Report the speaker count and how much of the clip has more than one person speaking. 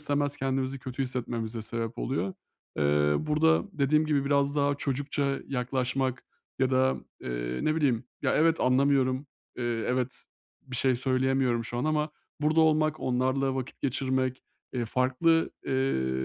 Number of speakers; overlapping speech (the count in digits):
1, no overlap